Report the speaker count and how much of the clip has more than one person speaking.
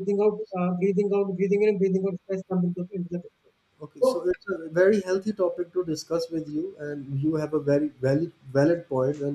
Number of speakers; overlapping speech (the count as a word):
two, about 3%